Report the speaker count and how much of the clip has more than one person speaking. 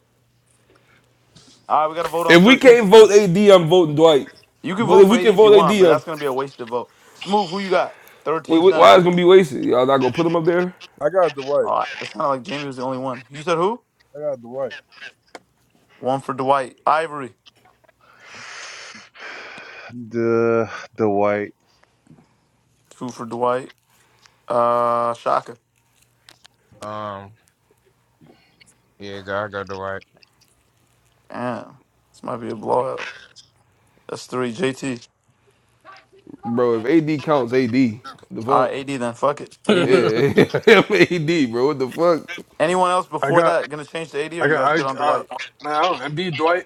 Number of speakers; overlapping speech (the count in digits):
6, about 9%